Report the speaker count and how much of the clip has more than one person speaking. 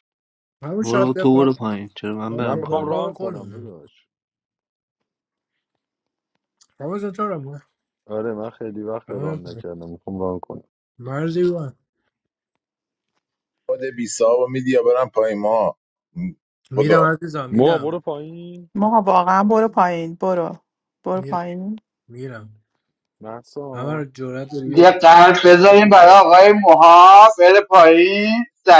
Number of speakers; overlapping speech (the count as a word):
six, about 12%